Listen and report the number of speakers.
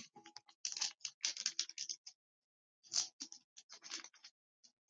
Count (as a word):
zero